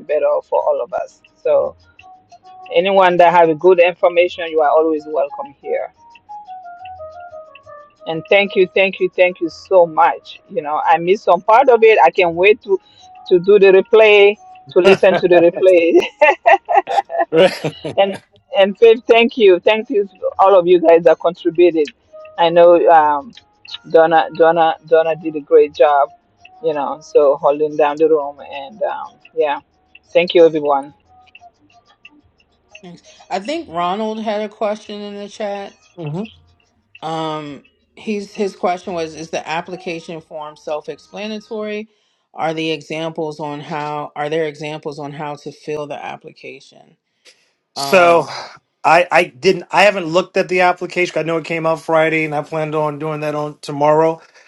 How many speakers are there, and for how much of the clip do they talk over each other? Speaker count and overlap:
3, about 1%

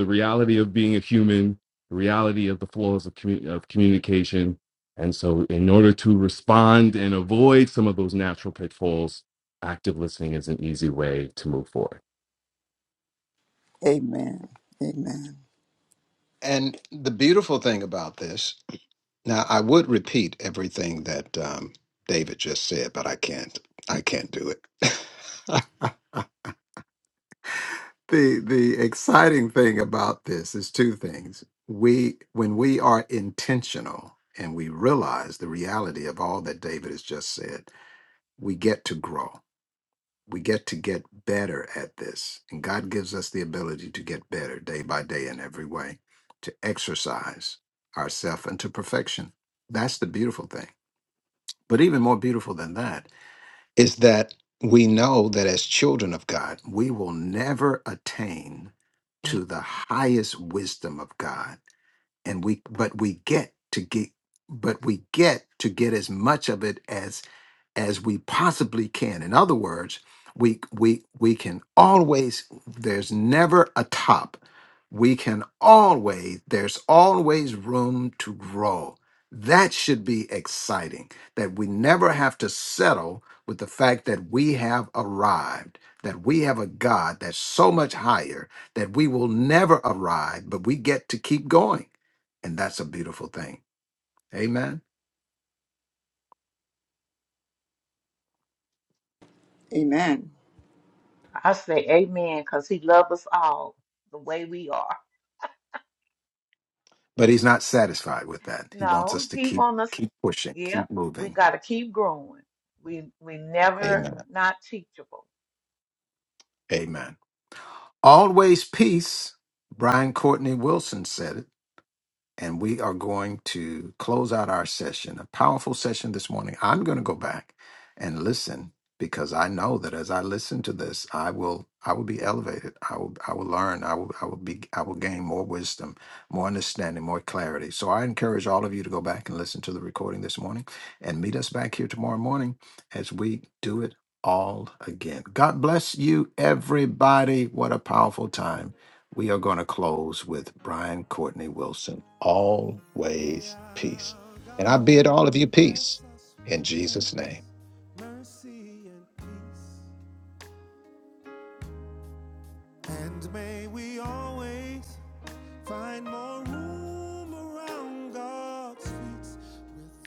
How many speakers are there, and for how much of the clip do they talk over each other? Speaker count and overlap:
5, about 2%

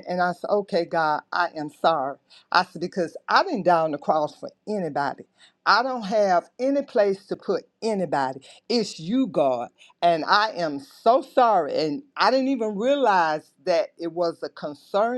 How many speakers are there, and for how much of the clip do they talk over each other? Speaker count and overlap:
1, no overlap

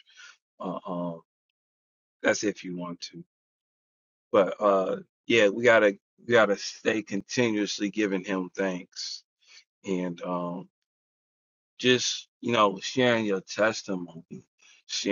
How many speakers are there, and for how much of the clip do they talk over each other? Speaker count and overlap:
1, no overlap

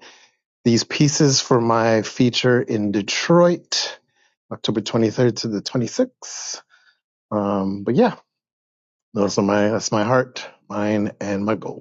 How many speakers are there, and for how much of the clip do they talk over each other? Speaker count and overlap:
1, no overlap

